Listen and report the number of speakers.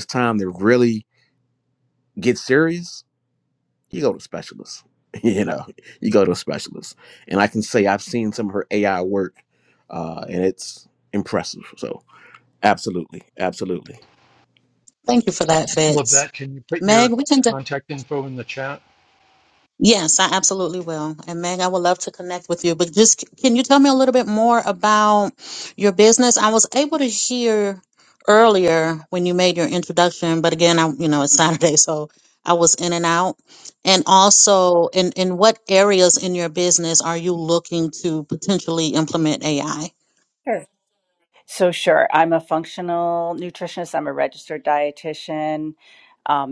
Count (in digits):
4